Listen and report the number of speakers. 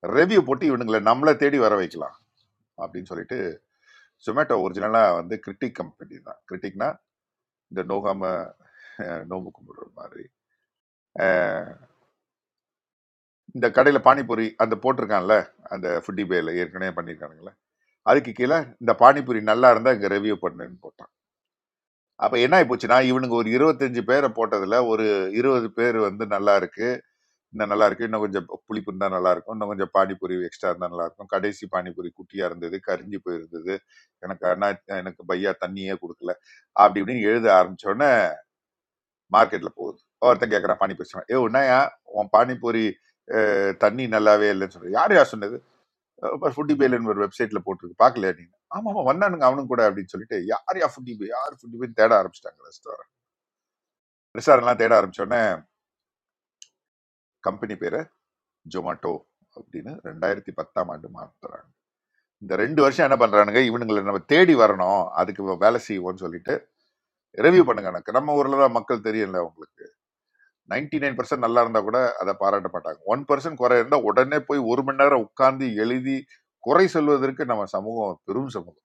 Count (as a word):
one